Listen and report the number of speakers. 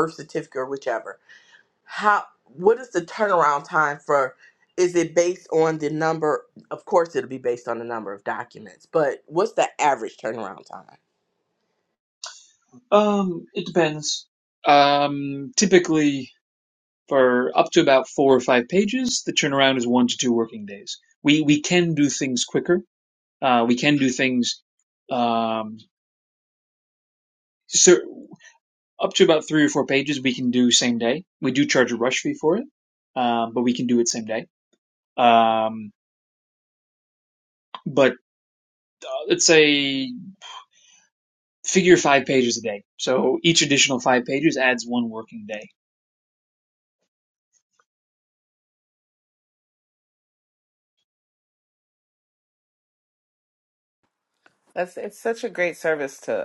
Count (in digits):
3